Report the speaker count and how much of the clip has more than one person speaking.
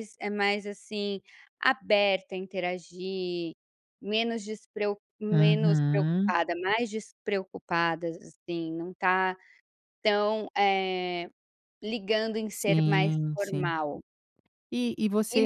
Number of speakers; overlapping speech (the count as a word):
two, about 14%